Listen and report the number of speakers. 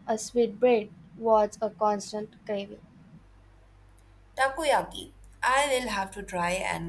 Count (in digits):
2